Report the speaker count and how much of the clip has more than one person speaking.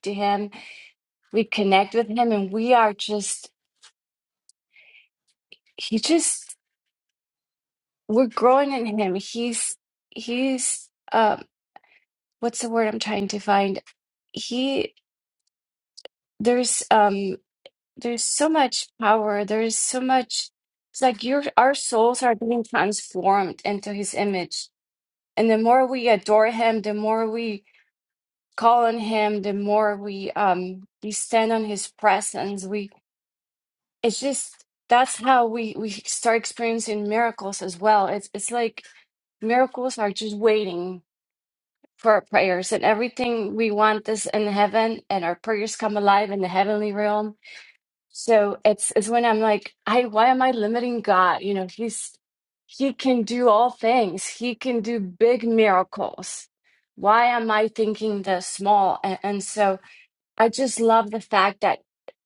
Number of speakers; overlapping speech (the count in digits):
1, no overlap